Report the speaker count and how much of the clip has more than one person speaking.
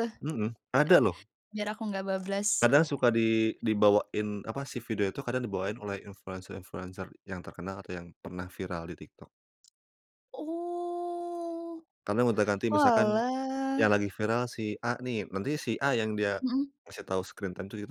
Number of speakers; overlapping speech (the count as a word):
two, about 3%